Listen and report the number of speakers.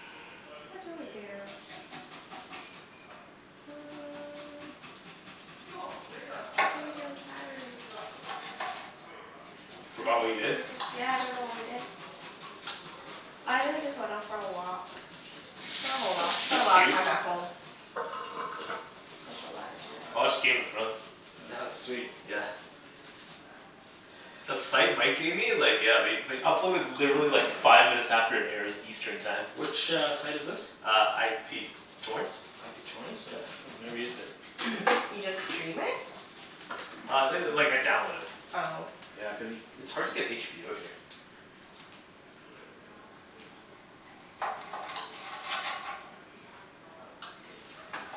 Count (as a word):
three